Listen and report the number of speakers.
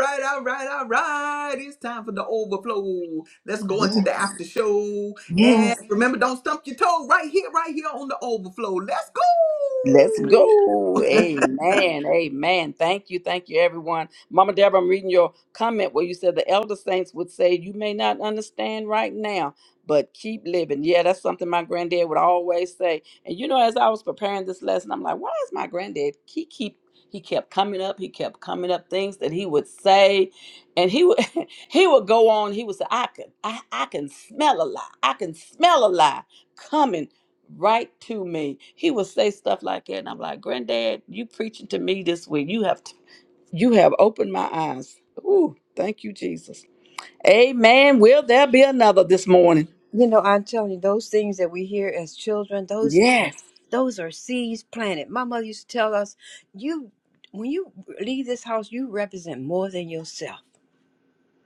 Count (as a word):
three